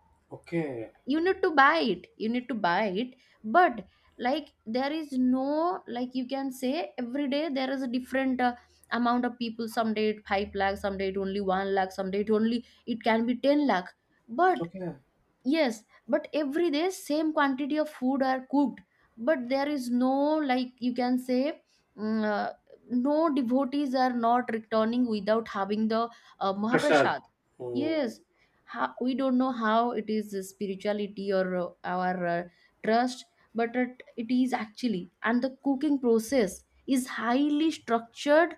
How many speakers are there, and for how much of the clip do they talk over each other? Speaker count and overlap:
2, about 2%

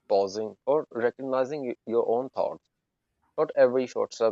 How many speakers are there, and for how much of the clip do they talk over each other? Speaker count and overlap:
1, no overlap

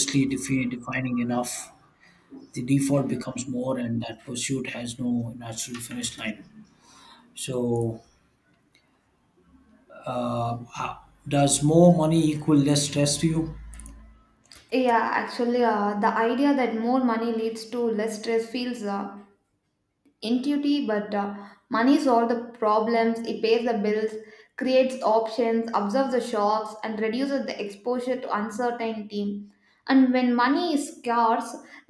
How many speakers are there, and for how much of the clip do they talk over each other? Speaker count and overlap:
2, no overlap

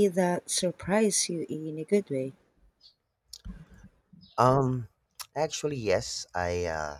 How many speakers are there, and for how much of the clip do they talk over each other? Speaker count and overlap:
2, no overlap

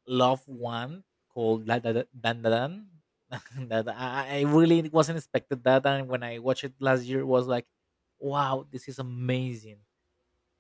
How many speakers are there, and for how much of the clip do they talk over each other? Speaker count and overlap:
1, no overlap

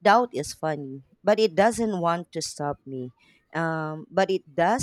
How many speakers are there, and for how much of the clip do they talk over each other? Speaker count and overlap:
1, no overlap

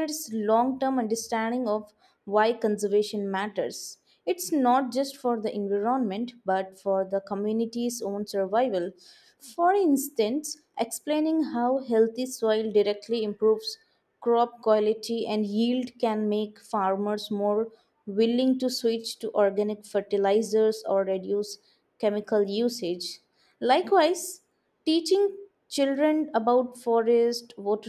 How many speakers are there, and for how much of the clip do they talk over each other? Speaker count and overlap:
1, no overlap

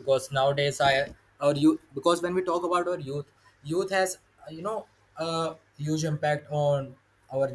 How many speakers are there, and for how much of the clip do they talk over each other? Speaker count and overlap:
1, no overlap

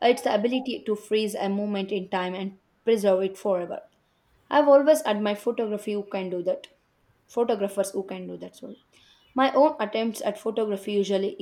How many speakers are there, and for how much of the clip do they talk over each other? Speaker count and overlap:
1, no overlap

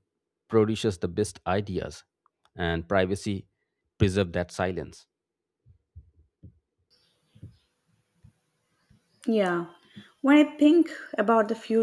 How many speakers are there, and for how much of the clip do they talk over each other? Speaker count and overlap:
2, no overlap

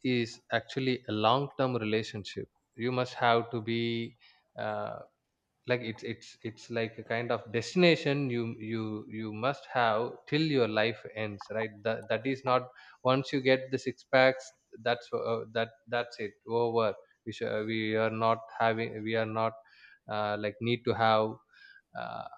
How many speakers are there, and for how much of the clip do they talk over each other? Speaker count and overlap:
1, no overlap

